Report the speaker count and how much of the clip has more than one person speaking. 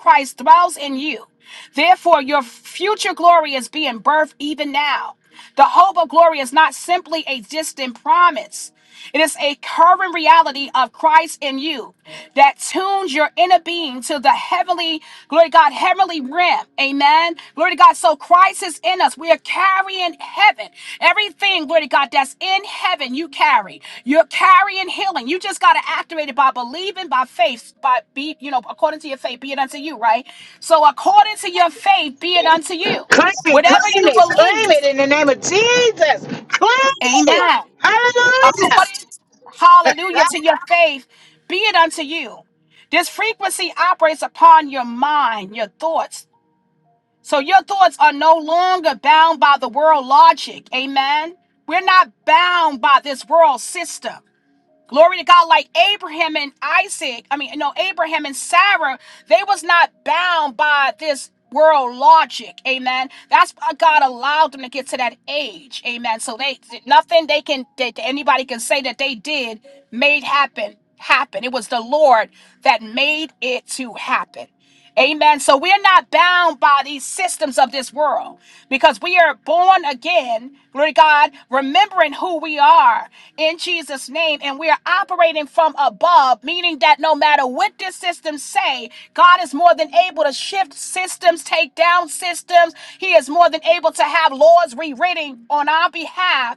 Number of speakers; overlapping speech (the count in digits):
2, about 2%